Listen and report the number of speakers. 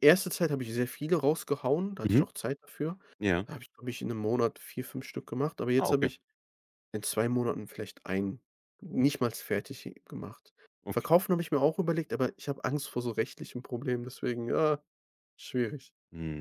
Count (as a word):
two